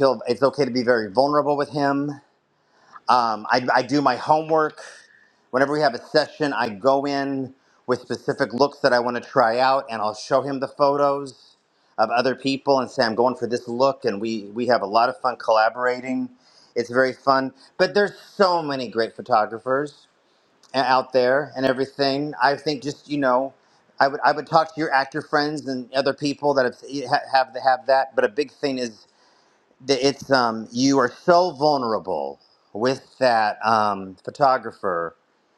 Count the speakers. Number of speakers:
one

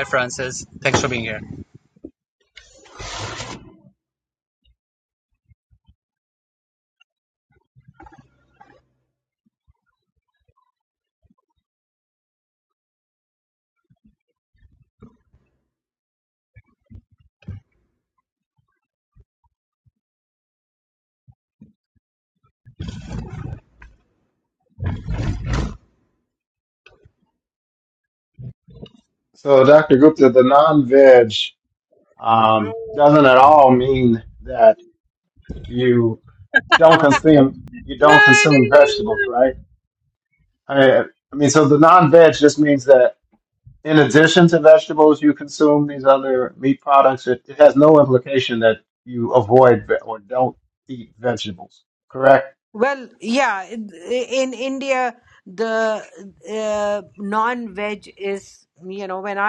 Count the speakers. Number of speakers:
three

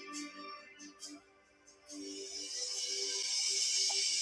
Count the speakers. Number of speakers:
zero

